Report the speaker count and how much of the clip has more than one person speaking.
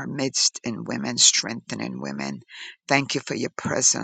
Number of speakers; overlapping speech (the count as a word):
one, no overlap